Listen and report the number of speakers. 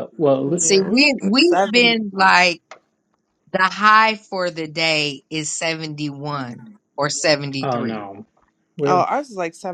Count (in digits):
3